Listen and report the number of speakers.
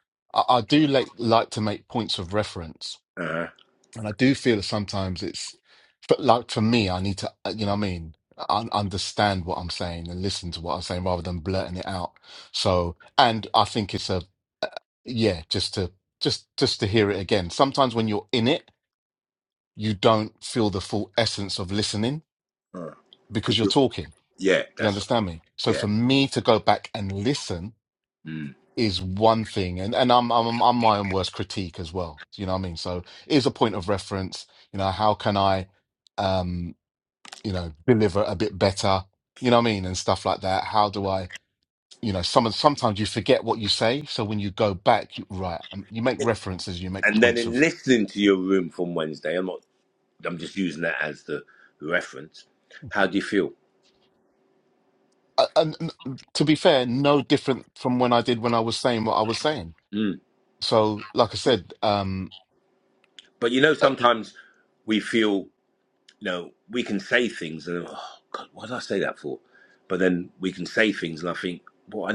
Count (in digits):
2